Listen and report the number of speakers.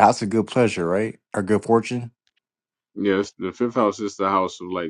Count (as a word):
two